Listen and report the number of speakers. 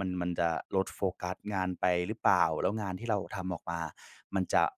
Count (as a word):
one